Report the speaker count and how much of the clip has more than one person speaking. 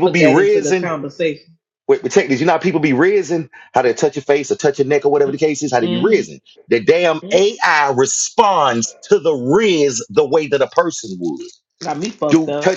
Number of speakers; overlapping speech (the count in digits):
2, about 15%